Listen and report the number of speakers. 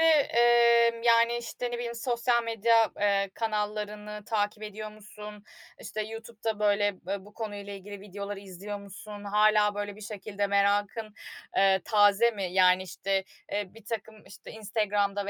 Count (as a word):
one